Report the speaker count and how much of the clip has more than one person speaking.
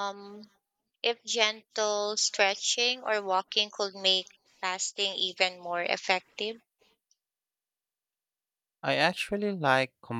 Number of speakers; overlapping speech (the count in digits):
2, no overlap